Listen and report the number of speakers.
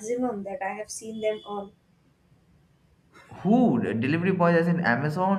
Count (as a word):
two